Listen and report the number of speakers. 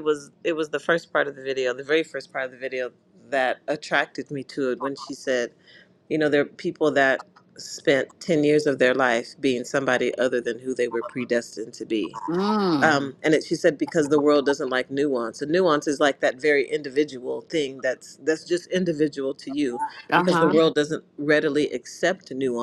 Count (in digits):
2